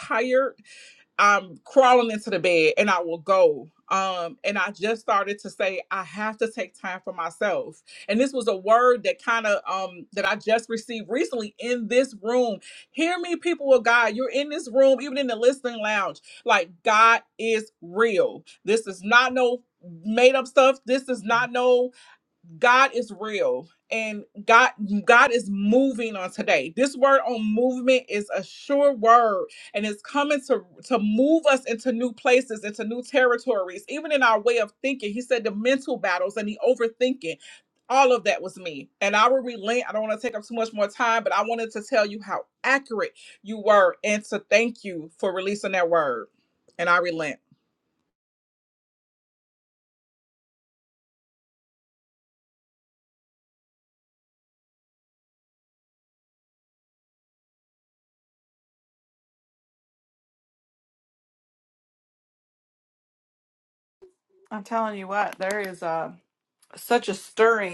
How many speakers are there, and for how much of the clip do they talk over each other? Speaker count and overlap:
2, no overlap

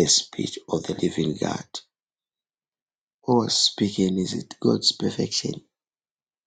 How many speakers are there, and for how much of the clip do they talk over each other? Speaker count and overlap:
1, no overlap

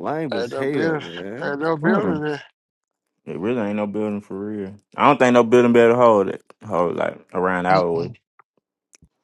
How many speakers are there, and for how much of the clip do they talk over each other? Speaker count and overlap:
3, about 21%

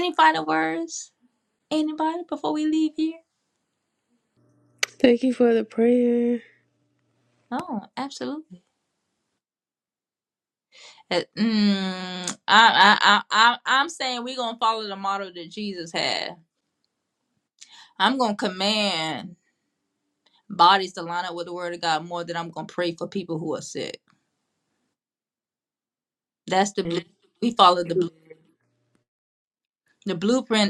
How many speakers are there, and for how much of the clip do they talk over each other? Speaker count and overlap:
2, no overlap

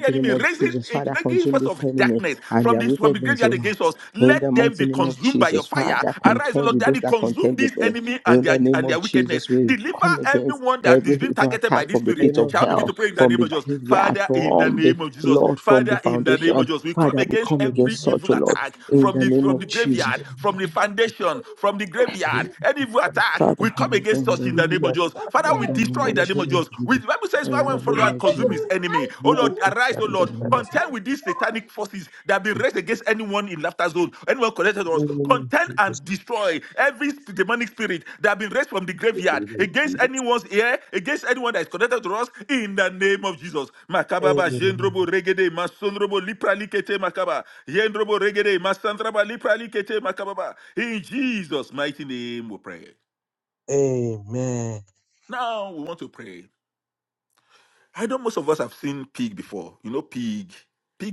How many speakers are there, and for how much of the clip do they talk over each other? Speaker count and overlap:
3, about 46%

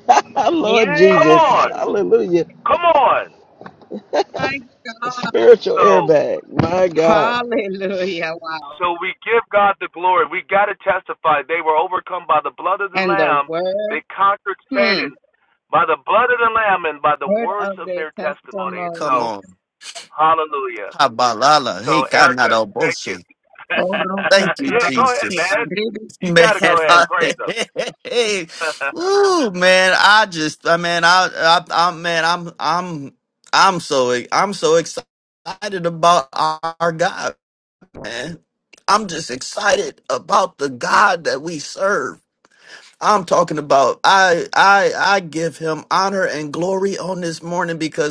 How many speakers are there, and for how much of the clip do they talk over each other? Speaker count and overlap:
4, about 18%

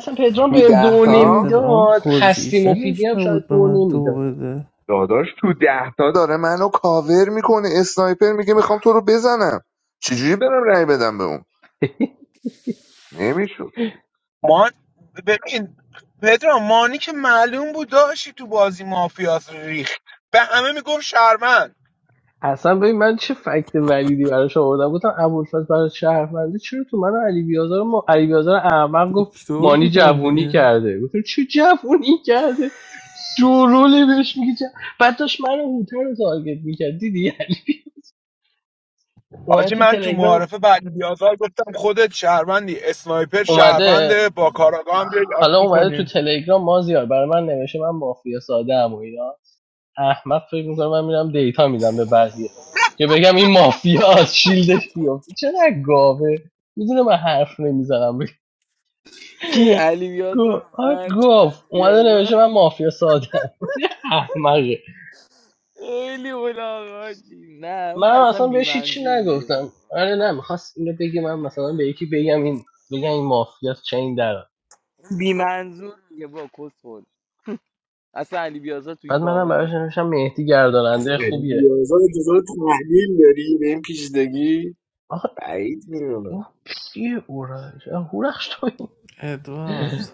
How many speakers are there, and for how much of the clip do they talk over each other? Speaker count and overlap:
6, about 14%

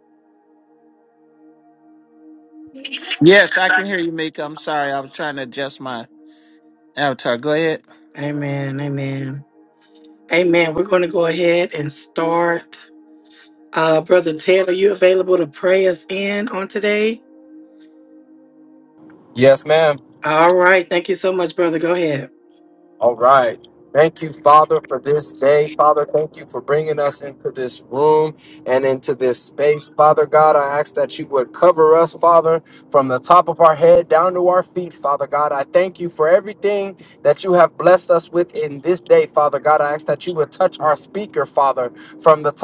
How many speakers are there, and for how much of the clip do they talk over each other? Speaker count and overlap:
3, no overlap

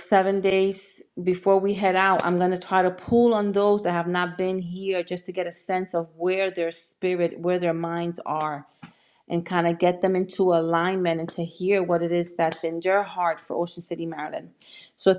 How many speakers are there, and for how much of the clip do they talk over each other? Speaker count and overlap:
1, no overlap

